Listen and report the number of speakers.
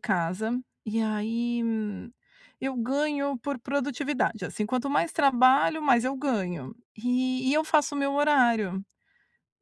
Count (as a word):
one